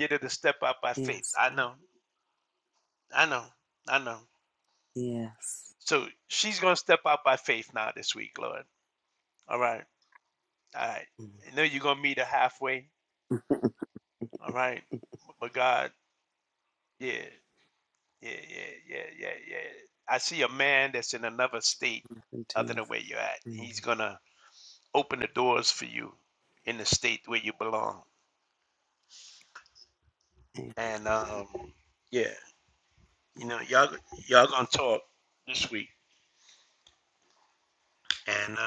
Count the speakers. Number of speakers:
2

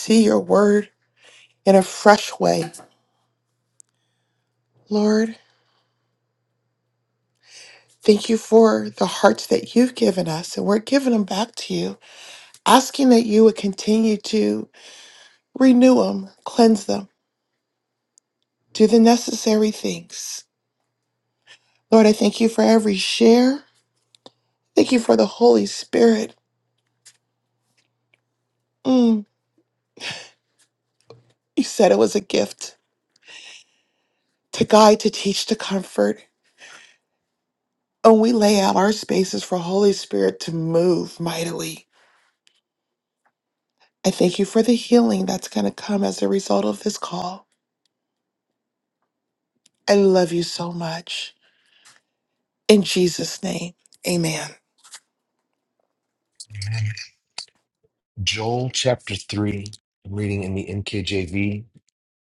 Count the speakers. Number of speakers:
2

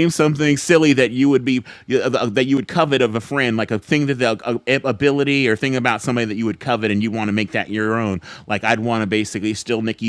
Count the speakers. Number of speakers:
1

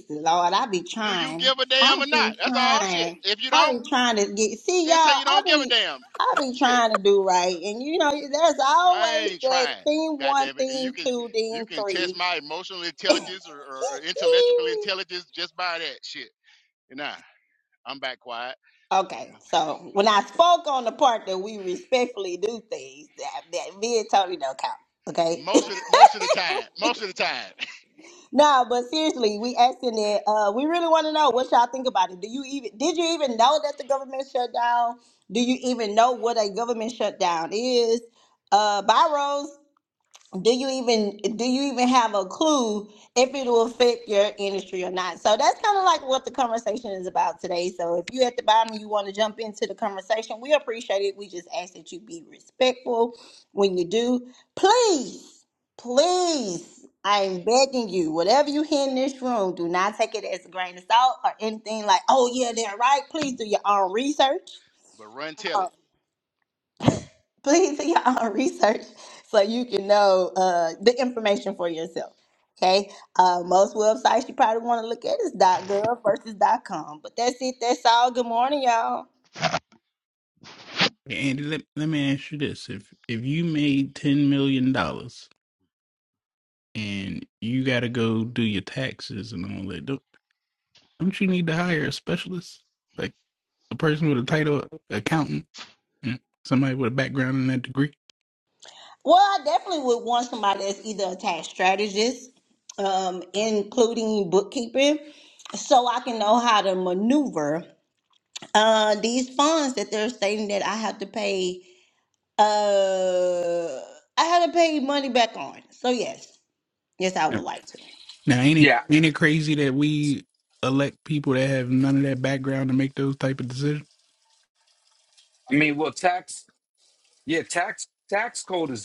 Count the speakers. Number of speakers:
4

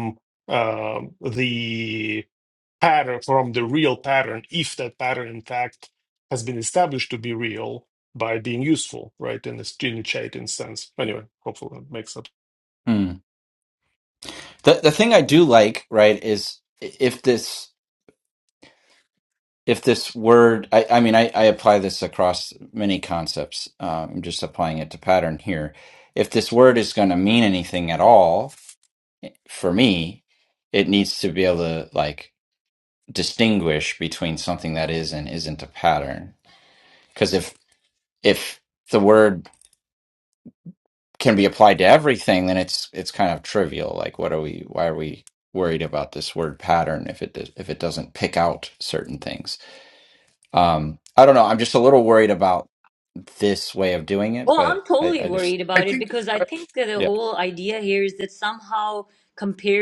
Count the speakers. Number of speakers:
3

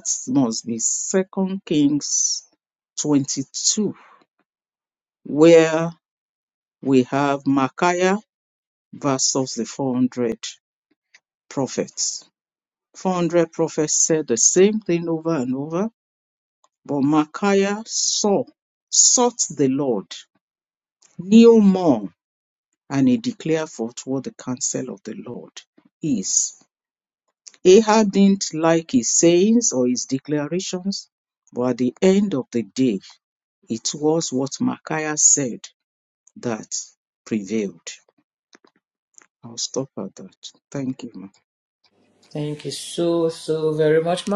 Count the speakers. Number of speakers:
2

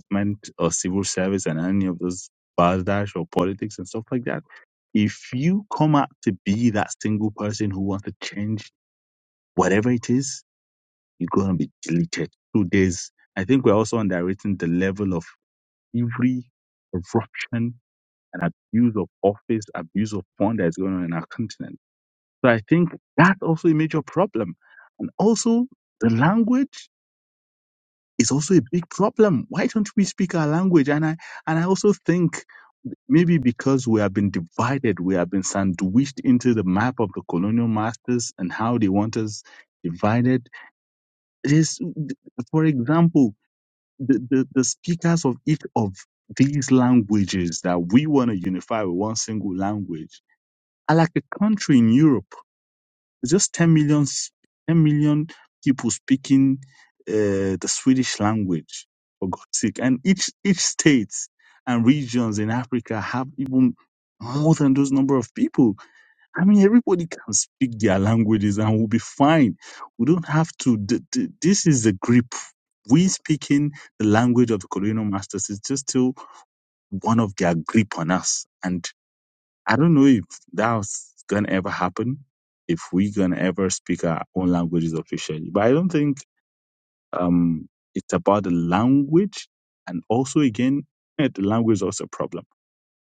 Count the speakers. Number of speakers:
1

